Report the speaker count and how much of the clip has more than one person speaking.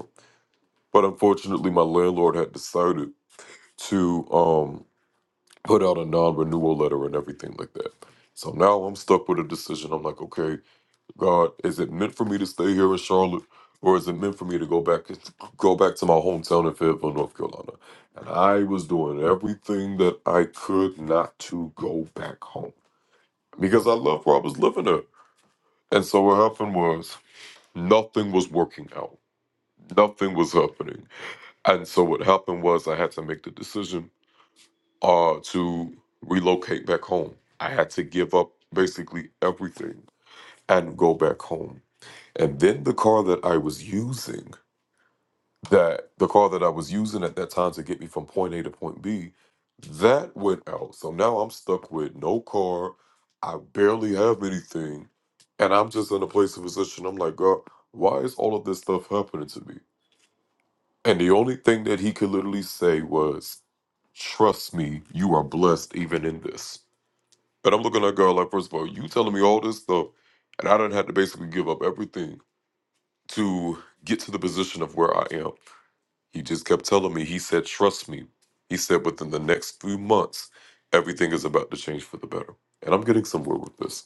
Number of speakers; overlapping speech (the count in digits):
1, no overlap